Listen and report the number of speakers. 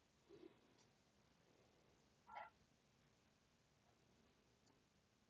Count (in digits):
0